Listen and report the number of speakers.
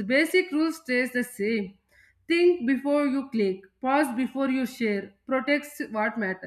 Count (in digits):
1